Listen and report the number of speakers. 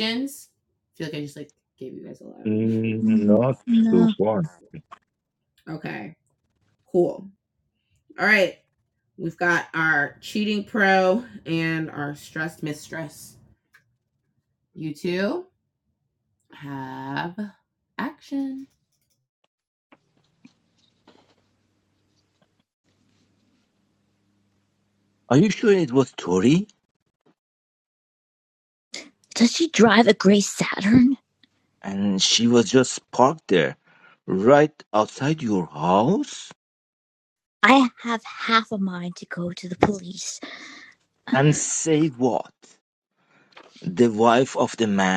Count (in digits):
3